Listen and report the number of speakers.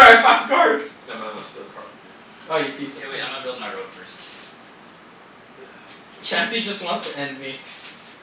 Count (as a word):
three